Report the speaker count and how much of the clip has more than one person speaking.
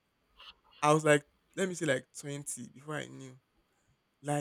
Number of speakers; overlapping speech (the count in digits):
1, no overlap